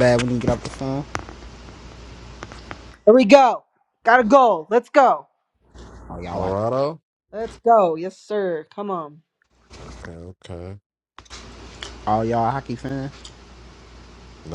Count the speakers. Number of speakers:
3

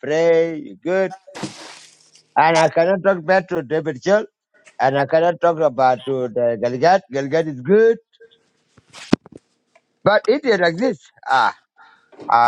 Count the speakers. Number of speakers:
1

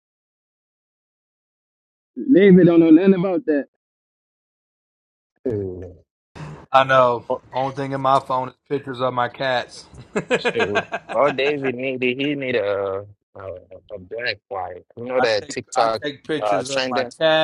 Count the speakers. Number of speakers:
3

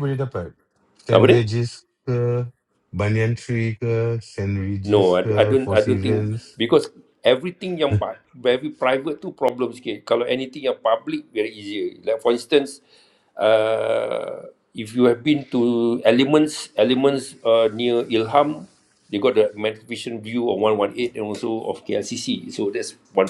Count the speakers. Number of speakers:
2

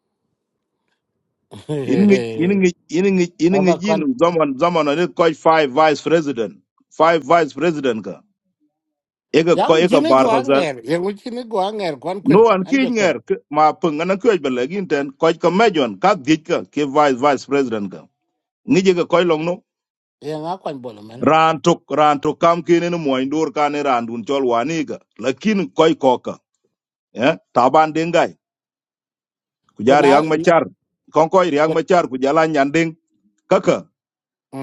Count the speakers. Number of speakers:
2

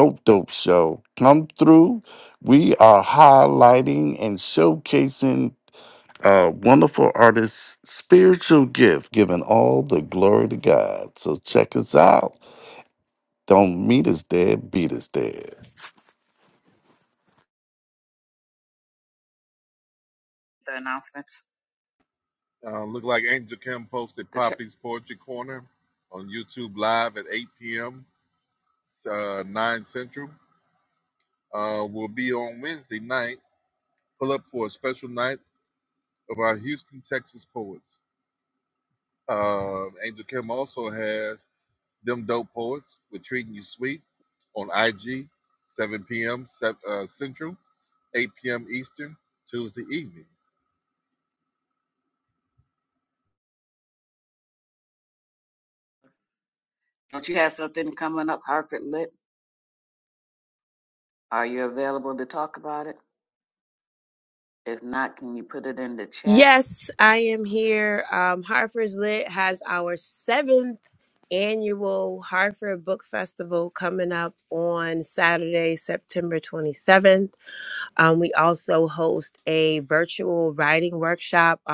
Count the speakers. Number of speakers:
4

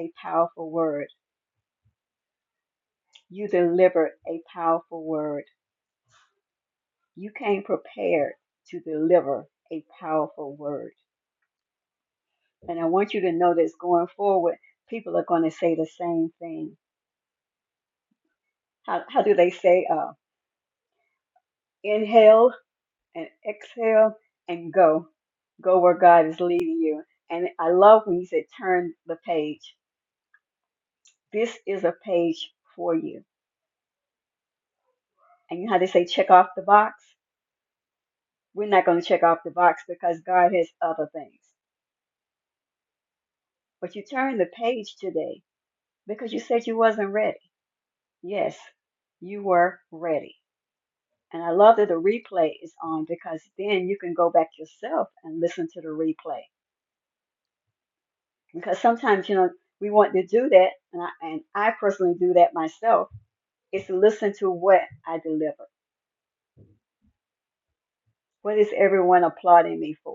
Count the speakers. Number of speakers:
1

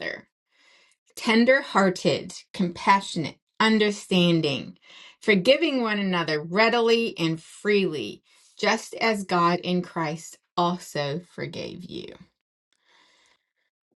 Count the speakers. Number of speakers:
1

